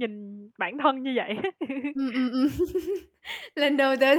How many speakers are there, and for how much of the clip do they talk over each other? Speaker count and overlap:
2, no overlap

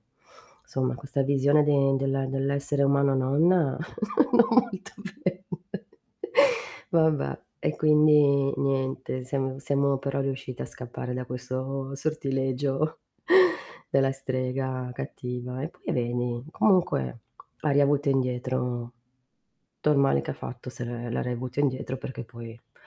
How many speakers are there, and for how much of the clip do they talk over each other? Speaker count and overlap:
1, no overlap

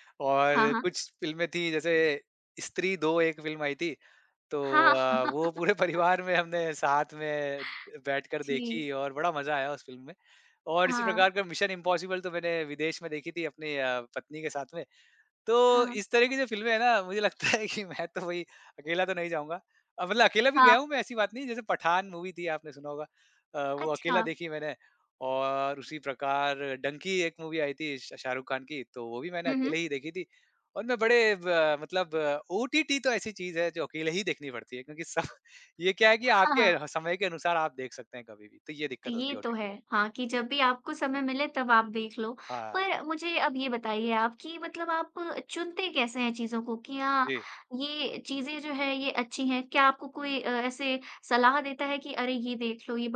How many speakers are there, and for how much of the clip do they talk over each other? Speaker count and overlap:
2, about 8%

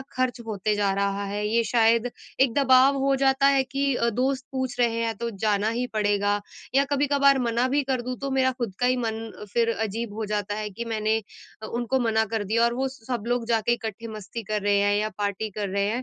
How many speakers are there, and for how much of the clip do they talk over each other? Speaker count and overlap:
1, no overlap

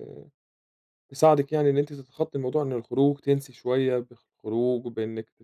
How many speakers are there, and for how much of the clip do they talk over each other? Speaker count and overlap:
1, no overlap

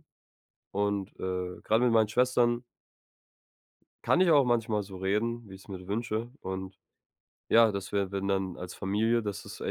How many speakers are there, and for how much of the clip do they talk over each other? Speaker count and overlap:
1, no overlap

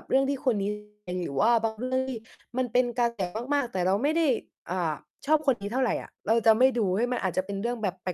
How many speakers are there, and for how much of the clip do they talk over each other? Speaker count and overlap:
1, no overlap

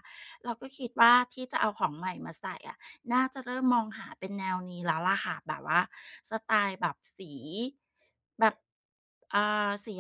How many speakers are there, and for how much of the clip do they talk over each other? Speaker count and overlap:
1, no overlap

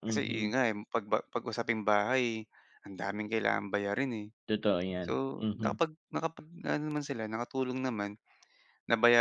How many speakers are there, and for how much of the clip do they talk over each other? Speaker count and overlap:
2, about 8%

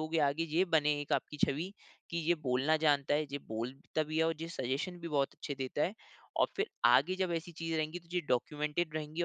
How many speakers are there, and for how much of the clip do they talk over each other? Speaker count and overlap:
1, no overlap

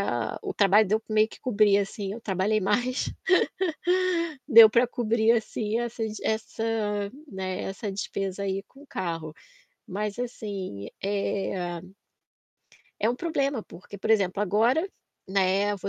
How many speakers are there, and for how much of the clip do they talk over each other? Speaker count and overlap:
1, no overlap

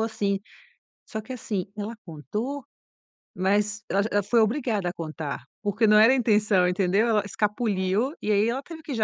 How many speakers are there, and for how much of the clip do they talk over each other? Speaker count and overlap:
1, no overlap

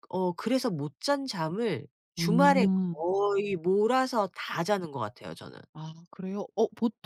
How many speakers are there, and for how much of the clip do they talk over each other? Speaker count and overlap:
2, about 11%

